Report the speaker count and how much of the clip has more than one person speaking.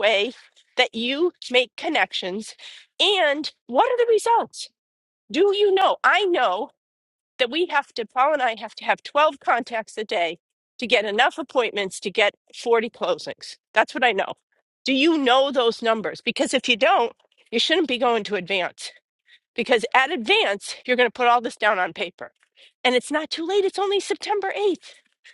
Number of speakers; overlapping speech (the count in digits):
1, no overlap